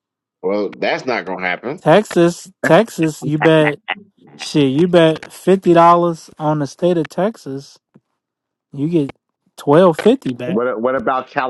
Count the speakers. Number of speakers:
3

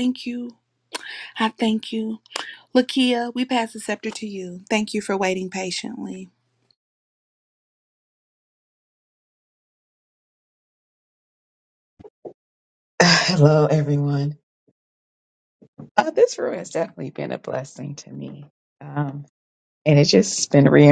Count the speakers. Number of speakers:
2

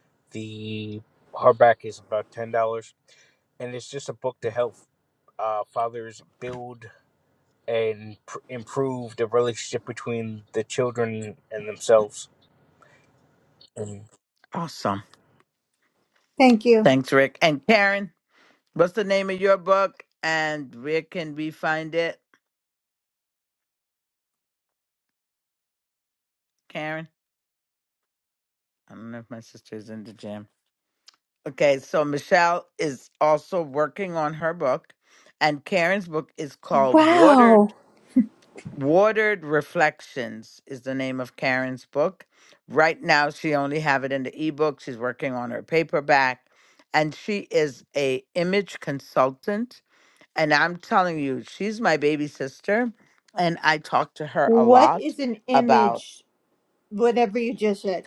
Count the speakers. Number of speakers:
3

